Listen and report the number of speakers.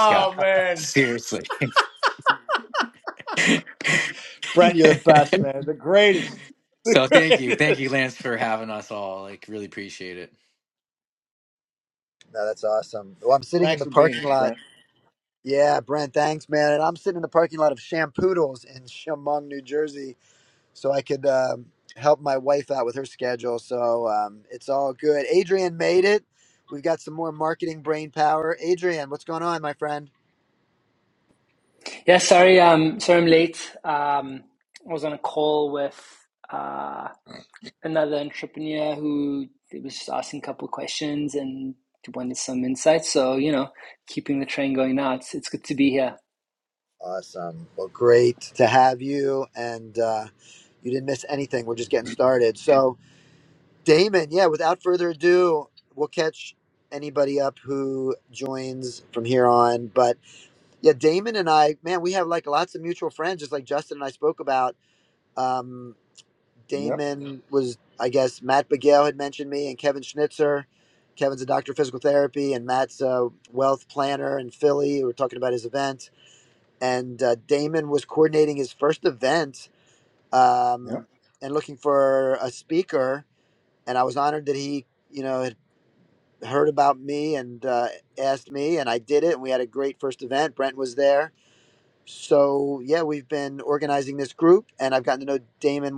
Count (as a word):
four